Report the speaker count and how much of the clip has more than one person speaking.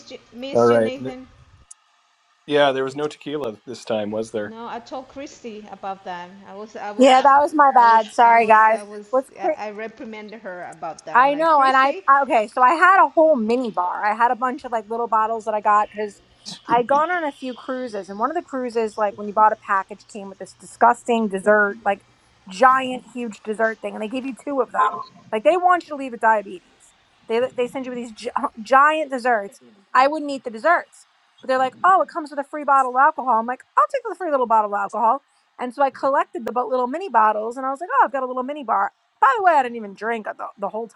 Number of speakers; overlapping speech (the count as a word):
three, about 8%